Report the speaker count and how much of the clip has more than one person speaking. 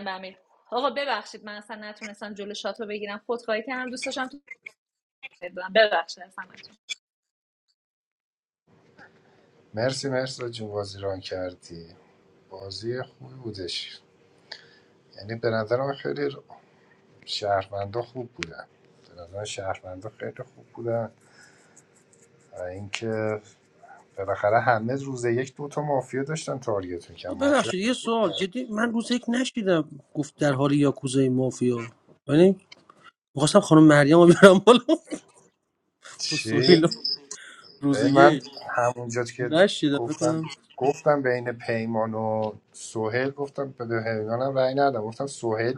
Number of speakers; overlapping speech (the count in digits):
3, about 4%